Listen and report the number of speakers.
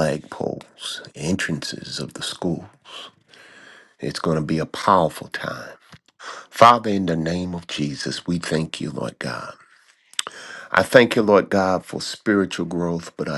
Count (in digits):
1